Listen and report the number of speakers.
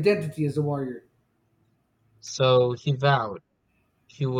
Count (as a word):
two